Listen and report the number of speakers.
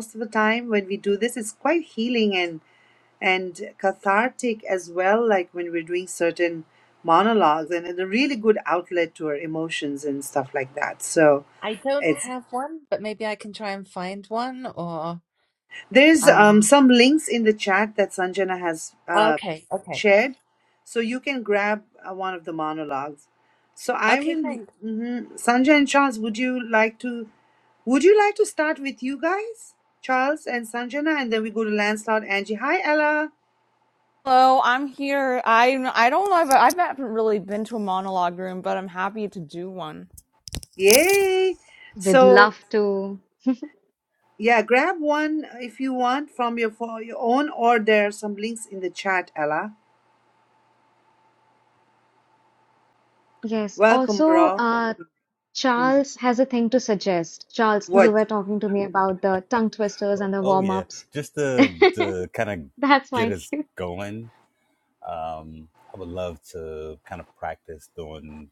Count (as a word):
five